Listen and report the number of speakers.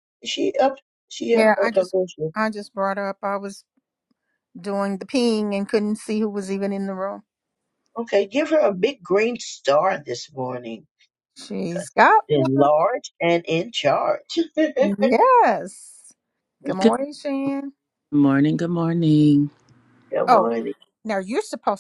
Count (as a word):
three